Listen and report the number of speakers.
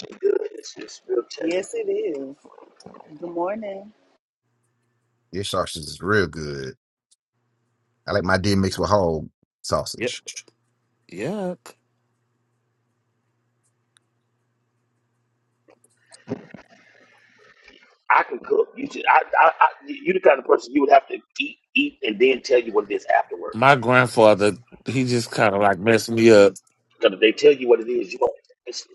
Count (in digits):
4